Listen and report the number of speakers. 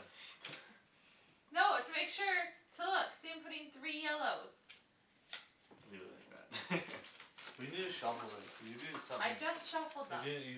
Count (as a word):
three